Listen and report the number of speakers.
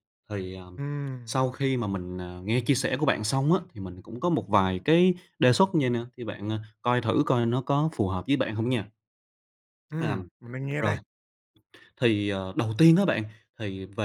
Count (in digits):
2